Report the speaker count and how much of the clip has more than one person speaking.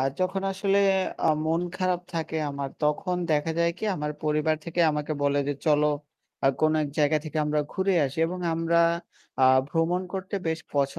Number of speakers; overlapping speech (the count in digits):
1, no overlap